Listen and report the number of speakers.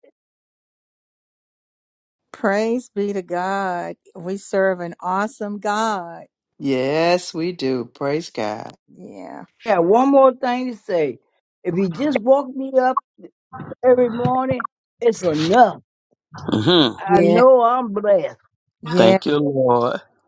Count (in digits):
4